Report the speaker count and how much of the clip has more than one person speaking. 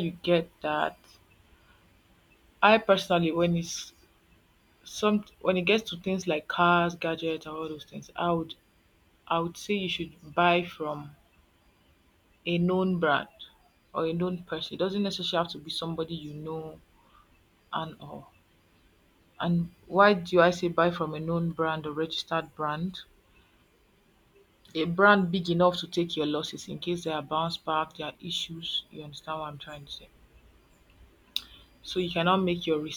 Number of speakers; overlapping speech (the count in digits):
1, no overlap